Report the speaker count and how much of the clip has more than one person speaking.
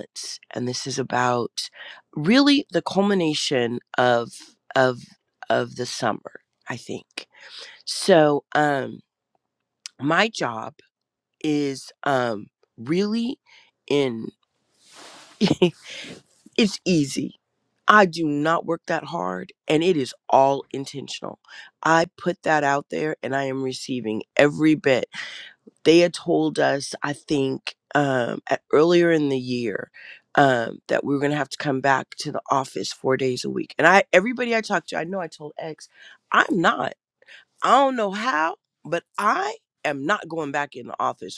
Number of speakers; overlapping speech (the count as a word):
one, no overlap